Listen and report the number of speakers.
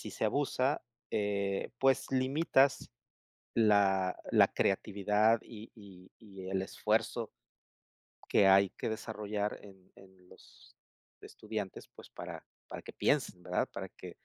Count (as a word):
one